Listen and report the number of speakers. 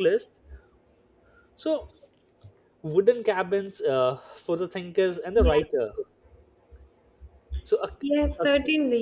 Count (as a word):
two